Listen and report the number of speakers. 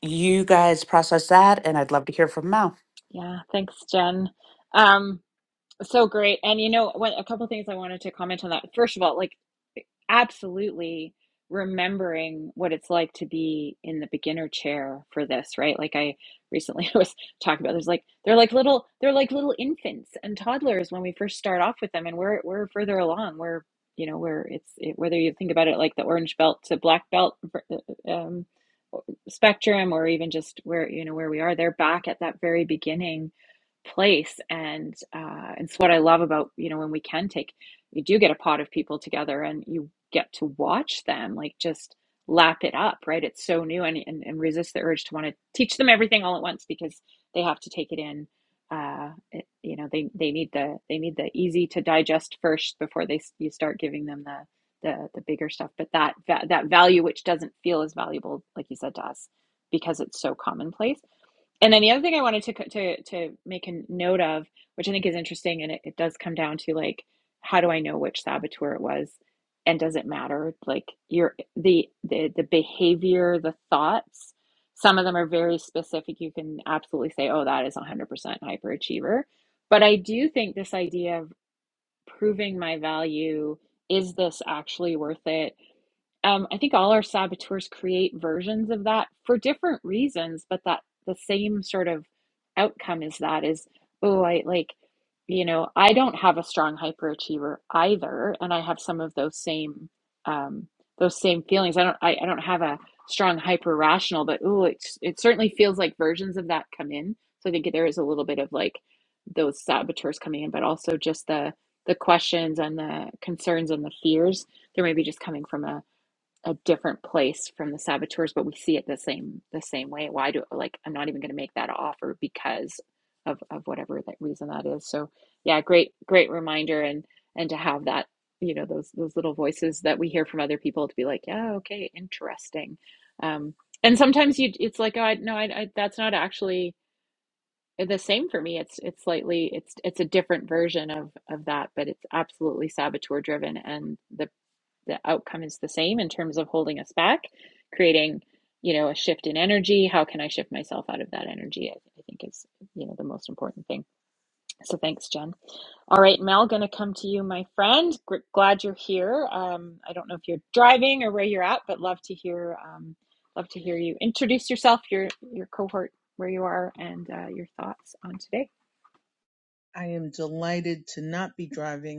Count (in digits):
3